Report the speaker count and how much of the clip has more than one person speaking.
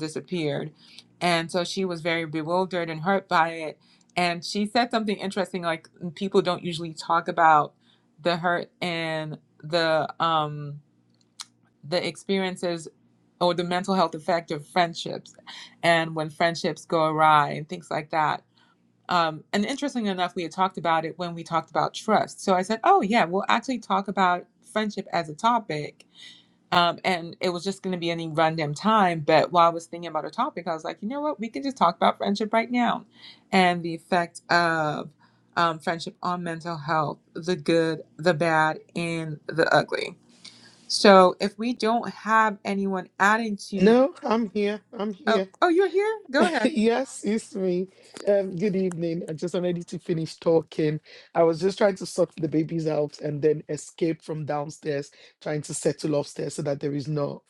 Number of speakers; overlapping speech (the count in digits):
2, about 1%